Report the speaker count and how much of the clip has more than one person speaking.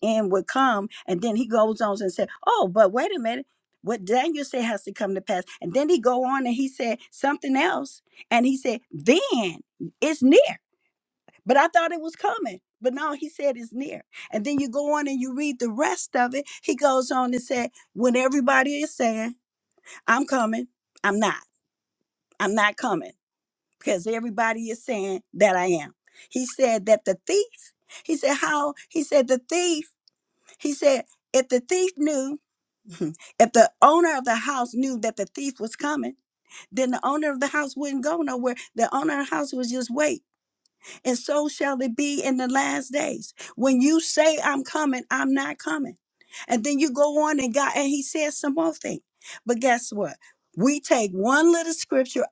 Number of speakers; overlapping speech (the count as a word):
one, no overlap